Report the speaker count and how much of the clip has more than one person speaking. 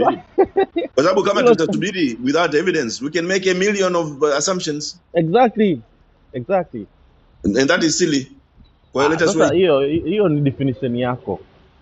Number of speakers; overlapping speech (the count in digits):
2, about 10%